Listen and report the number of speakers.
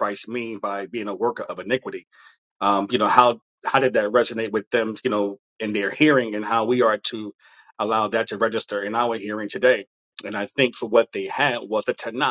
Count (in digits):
1